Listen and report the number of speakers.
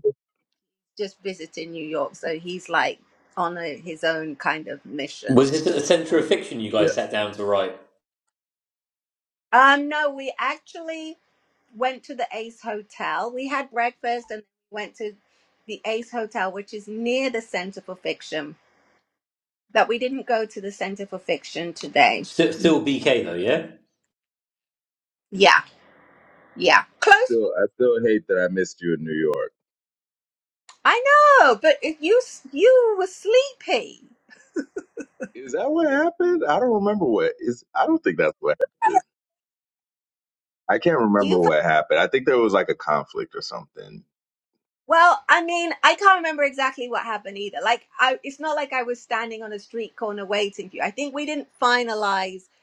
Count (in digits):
3